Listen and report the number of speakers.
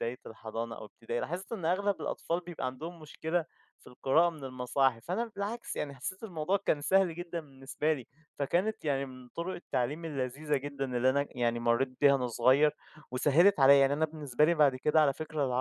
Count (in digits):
1